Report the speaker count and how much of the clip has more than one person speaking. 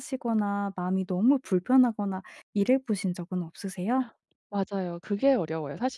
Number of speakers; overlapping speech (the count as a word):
two, no overlap